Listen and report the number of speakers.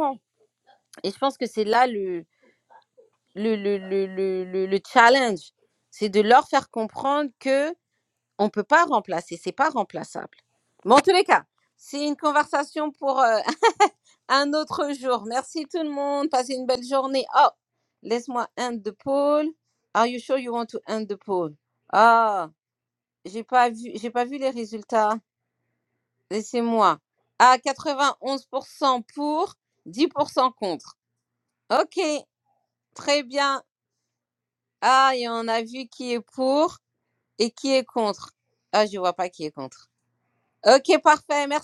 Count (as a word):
one